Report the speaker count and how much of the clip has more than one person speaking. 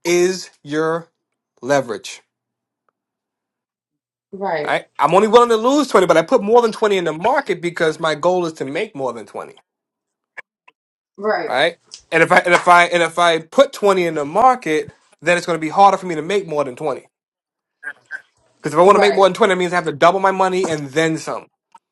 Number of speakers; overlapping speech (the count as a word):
two, about 3%